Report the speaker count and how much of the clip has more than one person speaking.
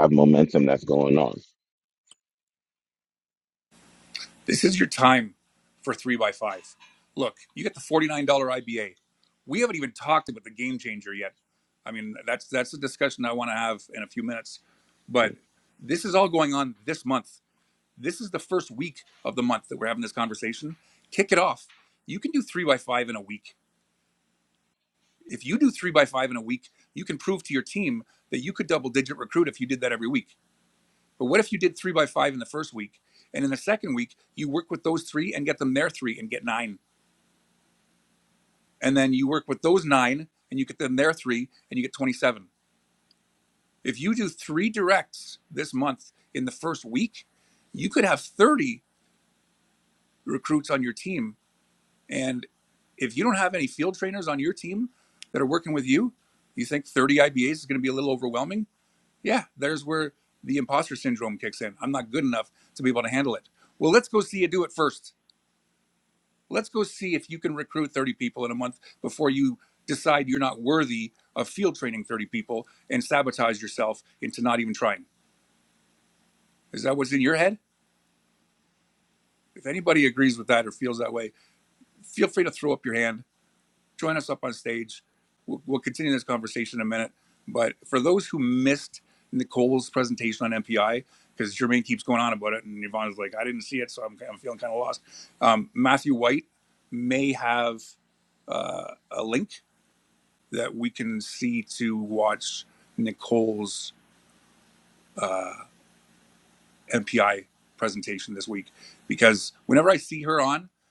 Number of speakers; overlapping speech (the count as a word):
two, no overlap